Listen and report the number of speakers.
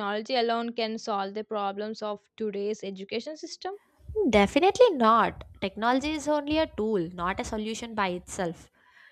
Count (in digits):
2